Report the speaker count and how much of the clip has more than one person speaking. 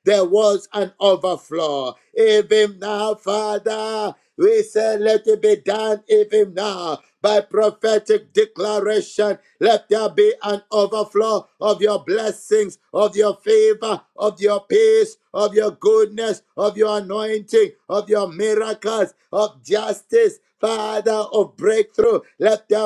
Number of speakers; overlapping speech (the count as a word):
one, no overlap